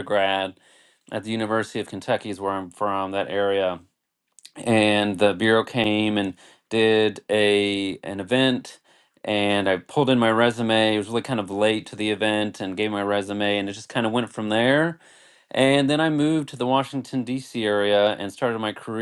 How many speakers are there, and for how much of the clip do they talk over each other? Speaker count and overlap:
one, no overlap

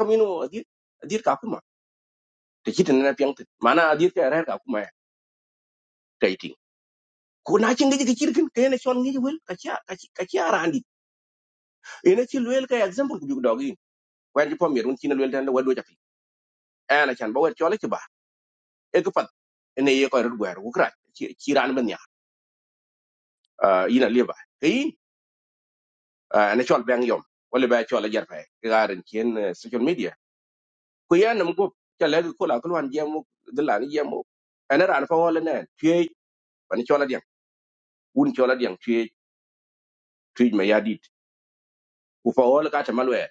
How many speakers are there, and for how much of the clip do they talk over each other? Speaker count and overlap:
one, no overlap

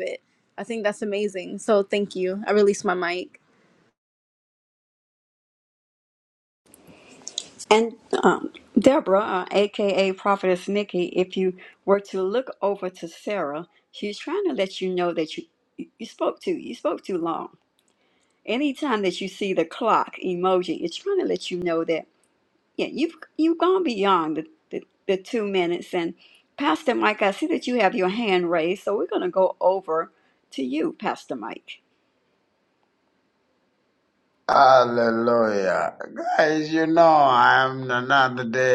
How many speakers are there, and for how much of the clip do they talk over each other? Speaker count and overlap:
three, no overlap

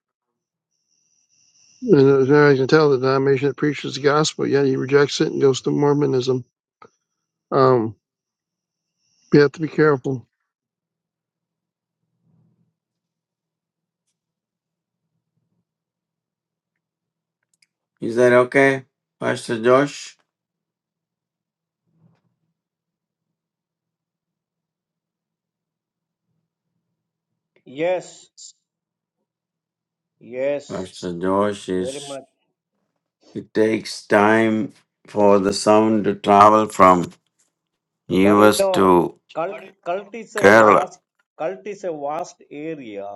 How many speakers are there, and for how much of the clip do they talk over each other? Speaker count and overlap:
three, about 4%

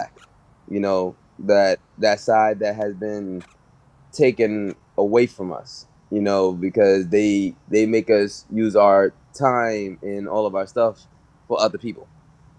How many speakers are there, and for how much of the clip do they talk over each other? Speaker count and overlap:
one, no overlap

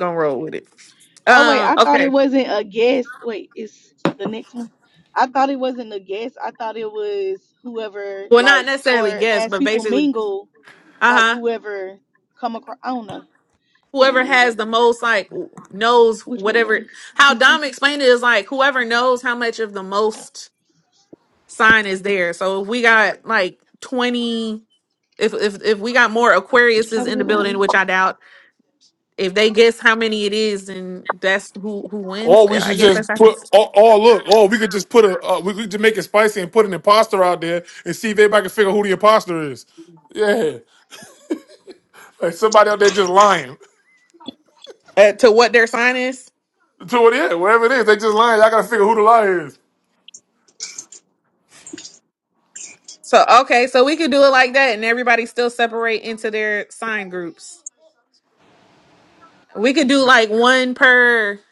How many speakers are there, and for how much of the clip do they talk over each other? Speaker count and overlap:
three, about 10%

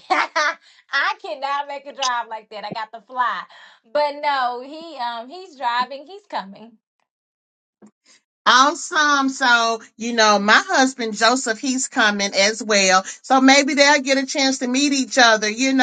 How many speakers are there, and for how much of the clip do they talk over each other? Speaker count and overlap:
two, no overlap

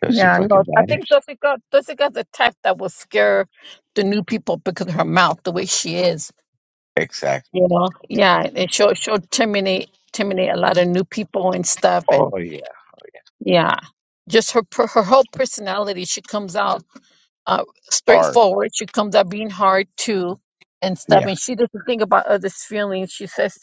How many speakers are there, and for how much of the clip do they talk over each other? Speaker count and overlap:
two, about 8%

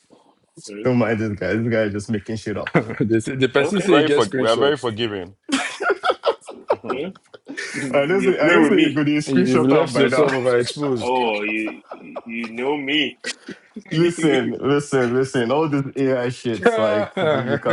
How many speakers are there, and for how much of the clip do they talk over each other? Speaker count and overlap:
four, about 18%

